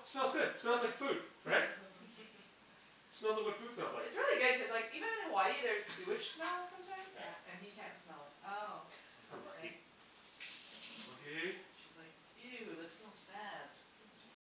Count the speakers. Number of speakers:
4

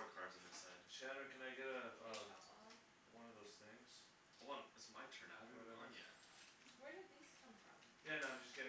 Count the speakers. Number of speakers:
3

